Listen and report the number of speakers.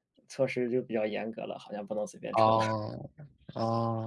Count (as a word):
two